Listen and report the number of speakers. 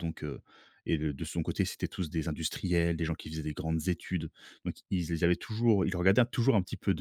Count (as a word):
one